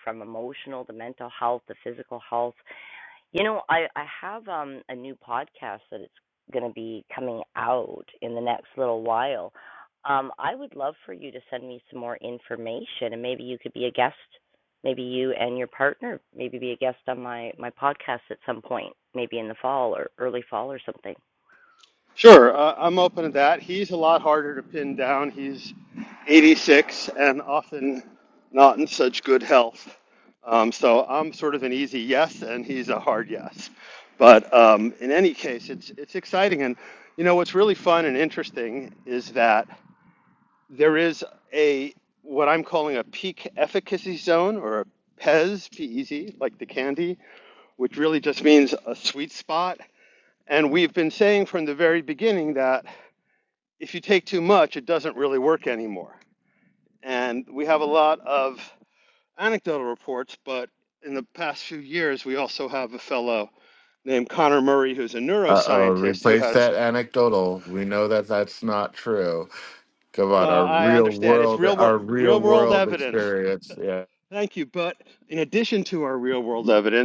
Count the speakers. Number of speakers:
three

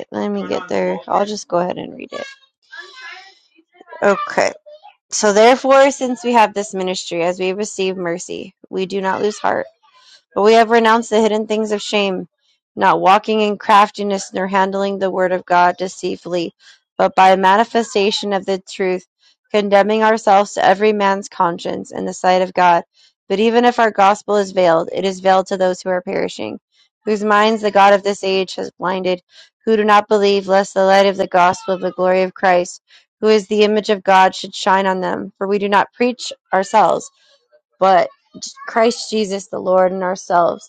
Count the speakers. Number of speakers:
one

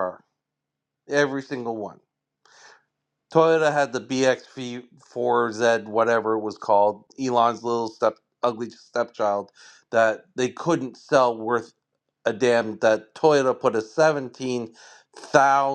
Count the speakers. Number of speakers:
one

